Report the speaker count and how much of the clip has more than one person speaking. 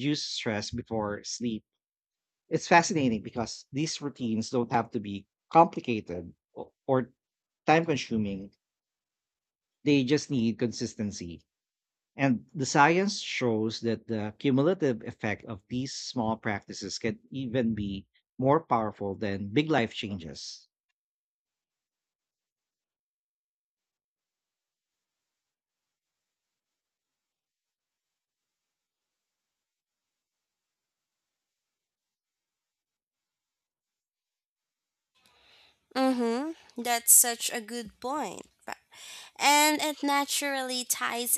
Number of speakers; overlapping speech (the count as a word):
two, no overlap